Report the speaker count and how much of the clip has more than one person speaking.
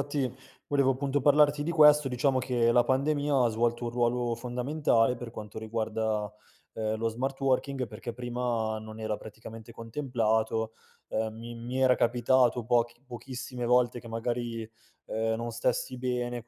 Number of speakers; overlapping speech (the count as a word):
one, no overlap